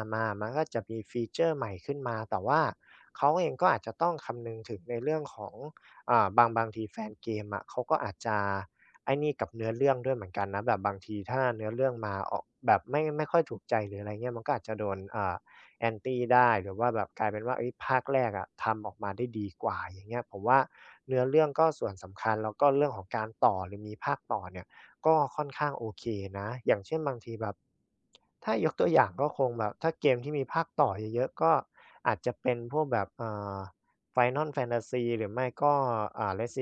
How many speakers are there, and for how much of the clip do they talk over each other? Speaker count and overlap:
one, no overlap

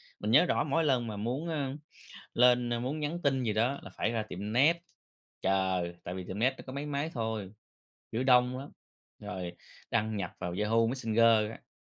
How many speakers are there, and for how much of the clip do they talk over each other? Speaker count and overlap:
one, no overlap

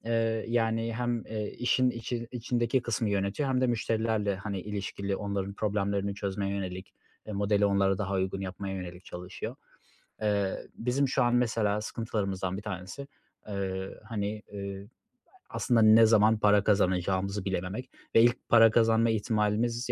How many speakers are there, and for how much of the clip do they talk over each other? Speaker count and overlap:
one, no overlap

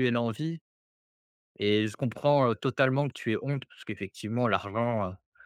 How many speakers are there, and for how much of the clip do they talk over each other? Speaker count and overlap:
one, no overlap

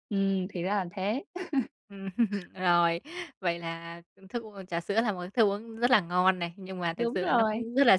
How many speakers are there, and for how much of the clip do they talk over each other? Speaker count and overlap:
two, about 9%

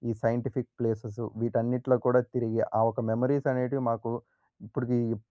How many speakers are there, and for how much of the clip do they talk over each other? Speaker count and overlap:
one, no overlap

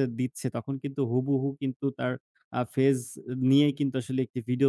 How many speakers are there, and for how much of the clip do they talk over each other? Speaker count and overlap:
one, no overlap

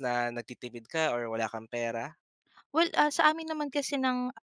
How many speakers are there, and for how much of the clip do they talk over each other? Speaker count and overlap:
two, no overlap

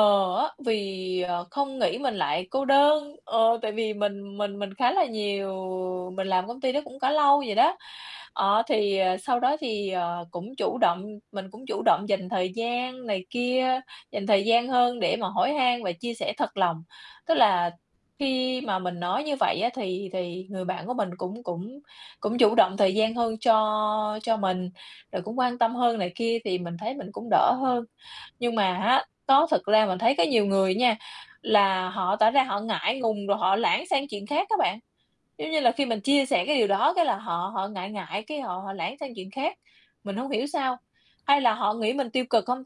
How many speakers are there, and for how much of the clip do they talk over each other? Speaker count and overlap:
one, no overlap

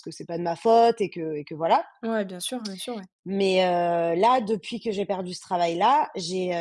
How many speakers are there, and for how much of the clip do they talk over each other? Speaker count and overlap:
two, no overlap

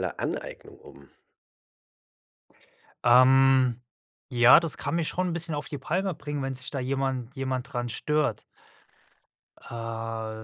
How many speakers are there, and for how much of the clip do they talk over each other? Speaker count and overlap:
two, no overlap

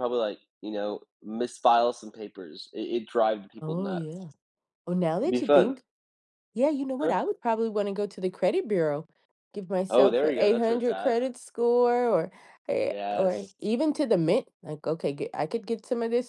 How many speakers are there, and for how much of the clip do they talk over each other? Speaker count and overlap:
two, about 17%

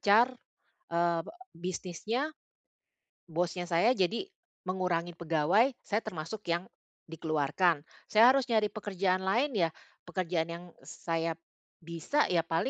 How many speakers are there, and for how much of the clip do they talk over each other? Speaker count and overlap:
one, no overlap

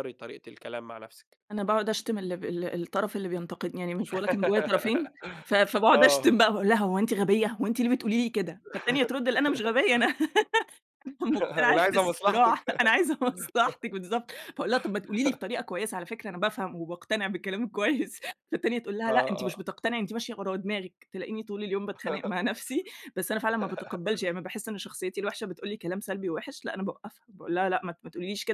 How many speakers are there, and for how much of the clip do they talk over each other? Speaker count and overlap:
two, about 7%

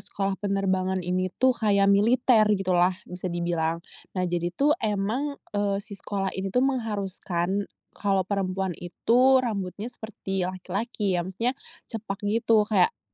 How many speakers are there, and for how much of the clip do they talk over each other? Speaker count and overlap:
one, no overlap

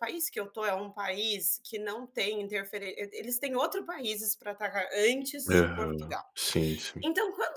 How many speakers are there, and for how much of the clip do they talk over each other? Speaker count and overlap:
two, about 11%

